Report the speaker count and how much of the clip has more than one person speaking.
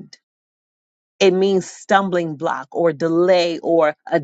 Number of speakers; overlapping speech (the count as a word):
one, no overlap